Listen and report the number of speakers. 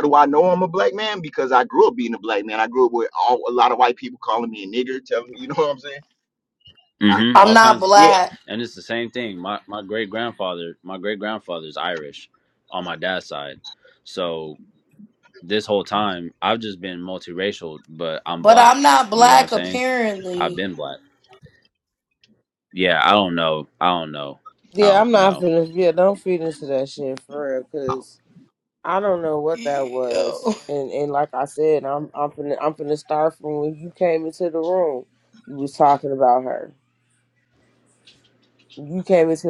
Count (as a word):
four